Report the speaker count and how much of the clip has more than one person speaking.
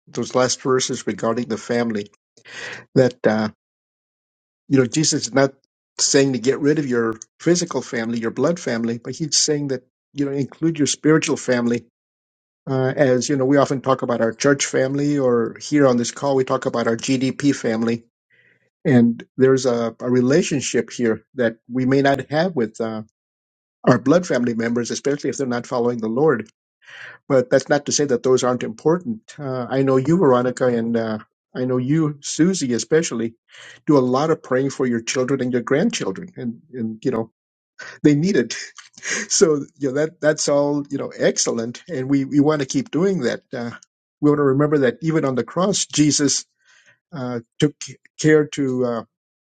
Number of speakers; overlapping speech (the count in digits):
1, no overlap